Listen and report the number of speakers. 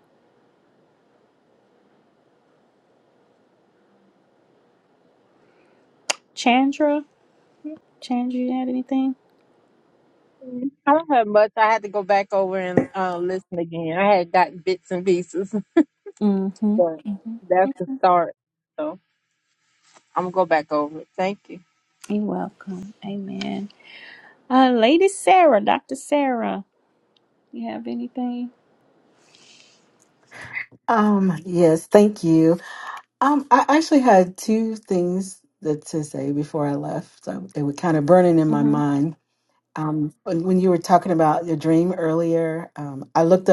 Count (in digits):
3